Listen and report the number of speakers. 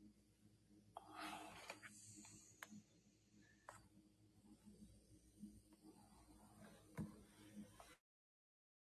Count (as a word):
zero